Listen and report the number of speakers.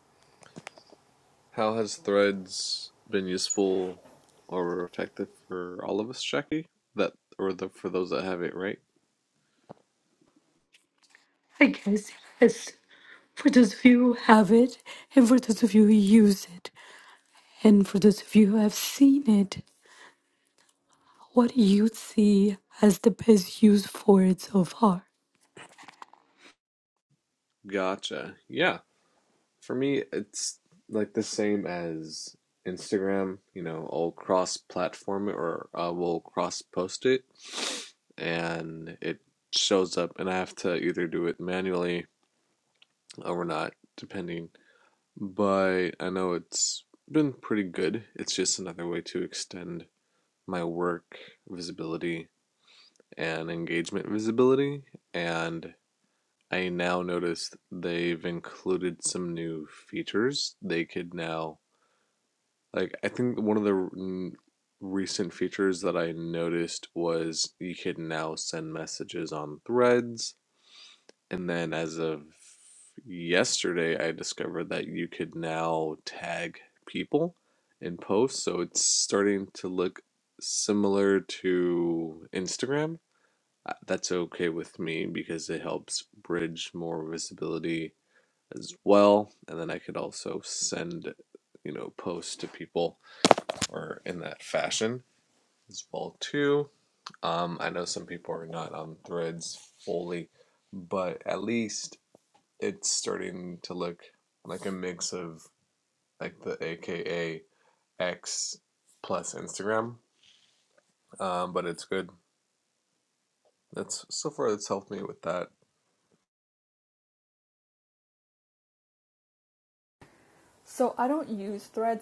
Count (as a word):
three